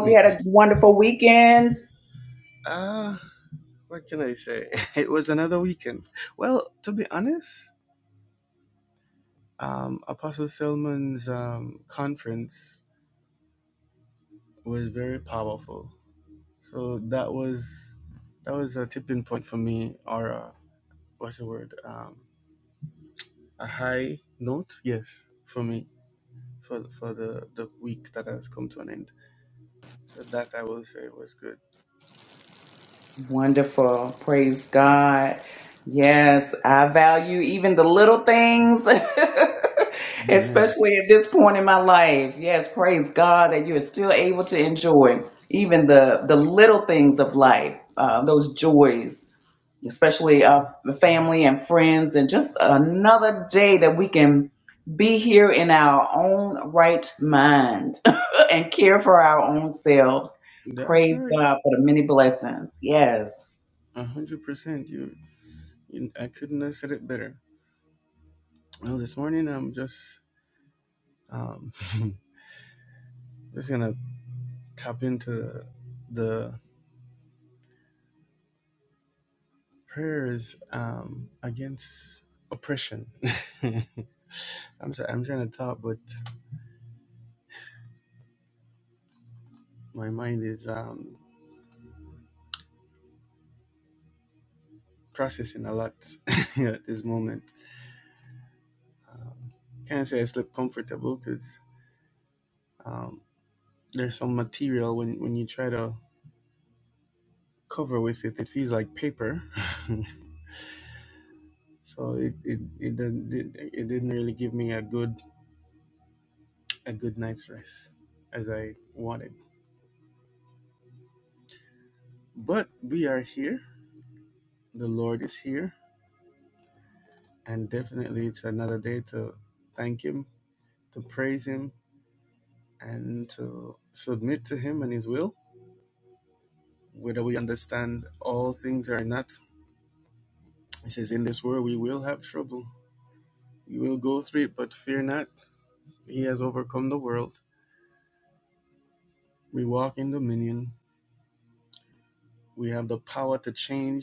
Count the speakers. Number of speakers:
2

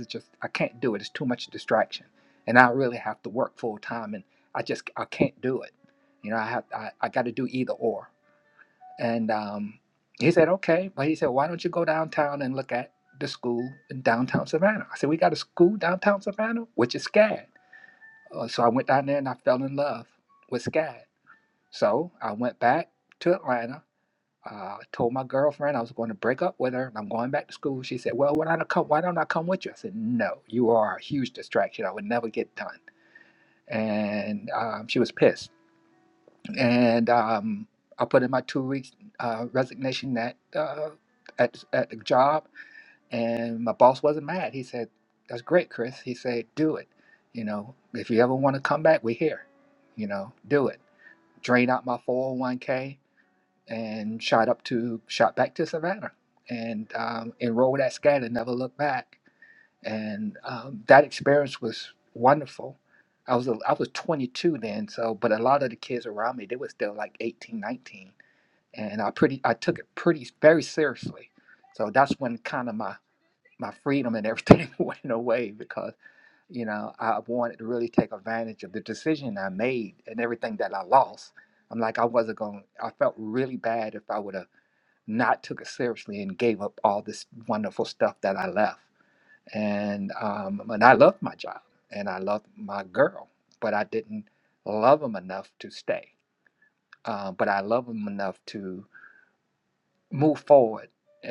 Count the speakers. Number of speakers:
1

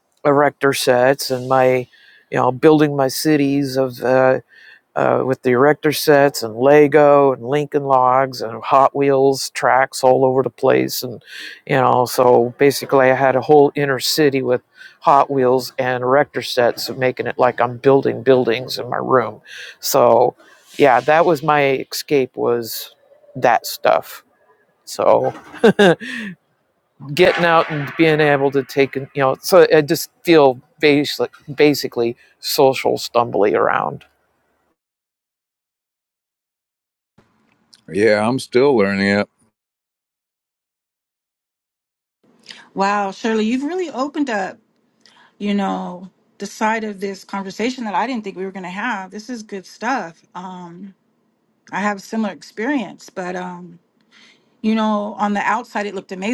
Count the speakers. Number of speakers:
3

